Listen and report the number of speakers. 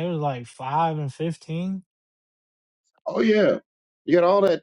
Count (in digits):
2